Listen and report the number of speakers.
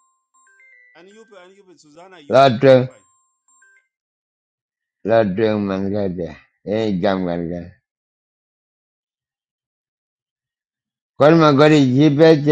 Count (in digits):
1